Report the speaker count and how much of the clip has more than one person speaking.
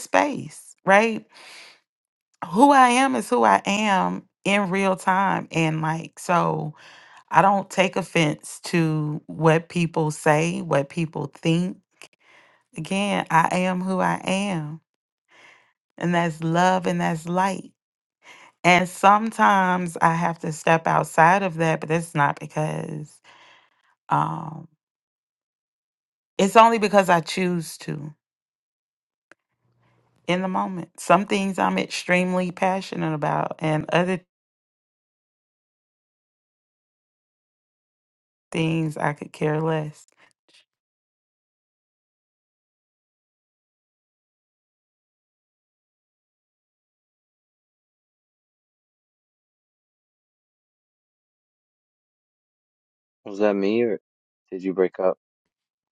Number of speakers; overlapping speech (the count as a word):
two, no overlap